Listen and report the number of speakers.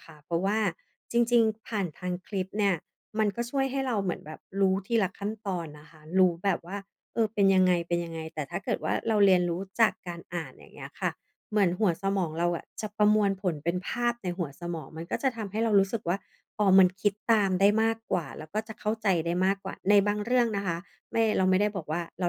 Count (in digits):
1